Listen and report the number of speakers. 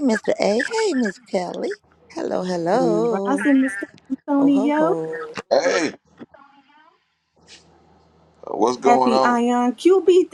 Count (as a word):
three